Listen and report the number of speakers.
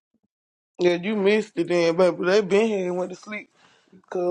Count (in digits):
1